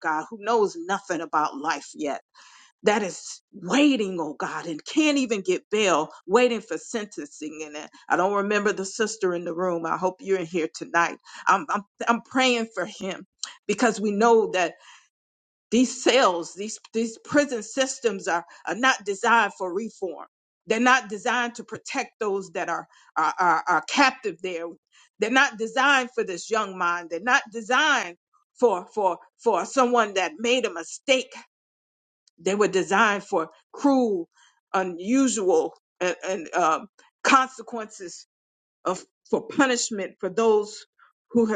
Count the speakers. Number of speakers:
one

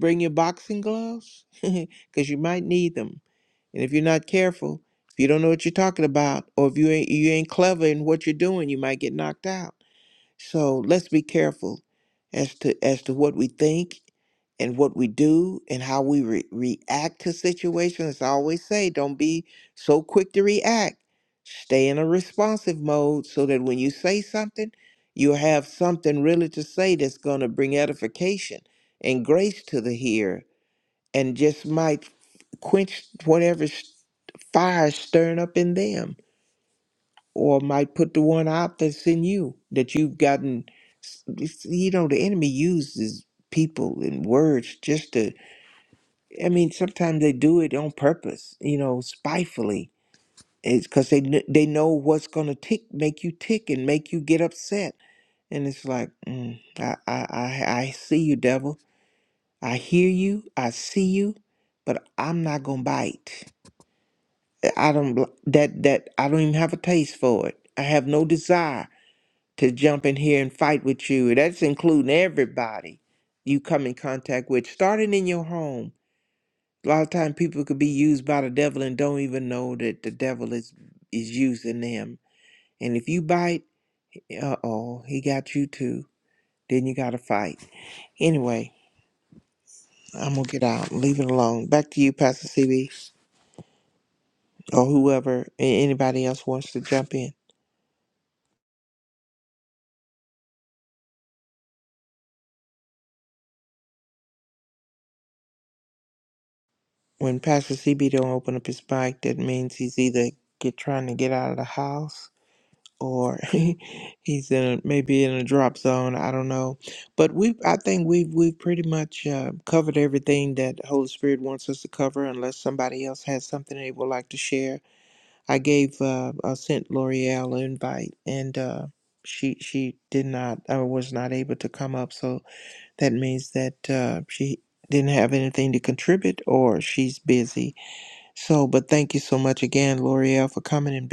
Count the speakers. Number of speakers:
one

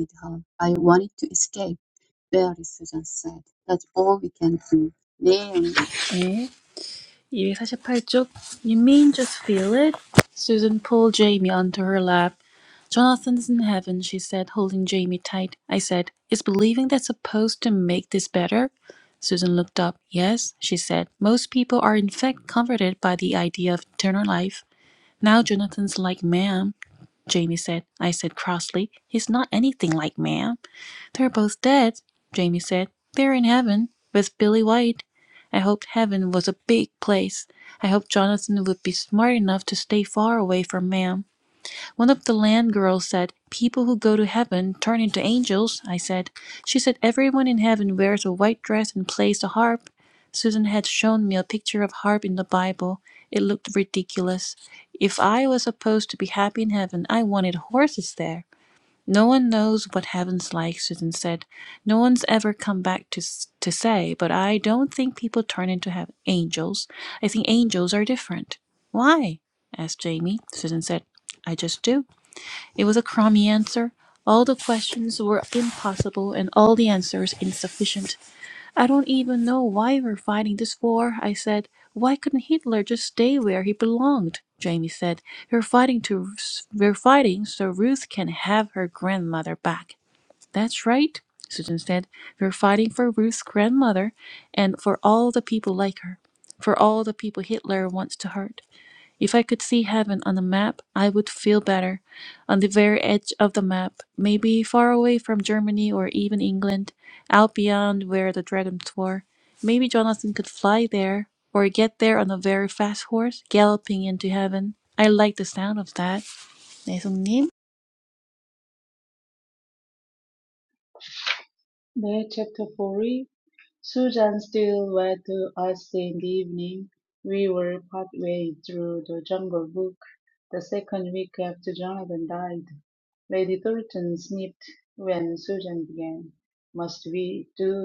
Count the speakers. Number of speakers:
three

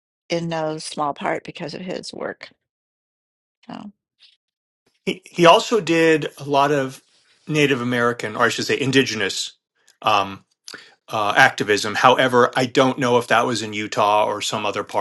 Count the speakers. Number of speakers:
two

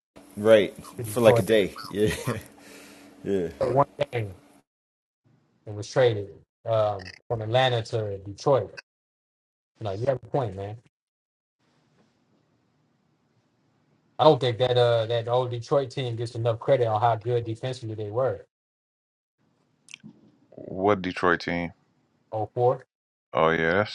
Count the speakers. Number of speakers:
three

